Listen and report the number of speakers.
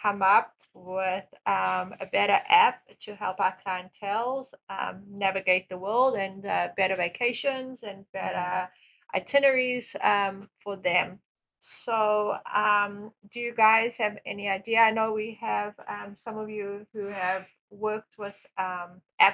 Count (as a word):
one